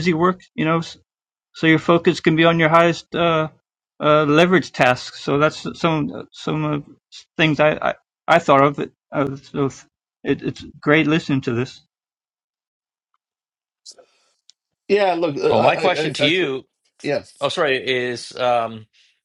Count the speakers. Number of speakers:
three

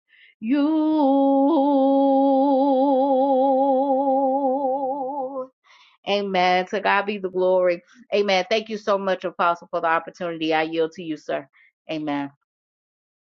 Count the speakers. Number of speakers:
one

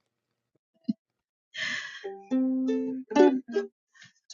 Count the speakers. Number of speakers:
zero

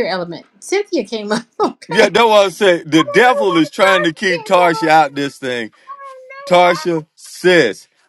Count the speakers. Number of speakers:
two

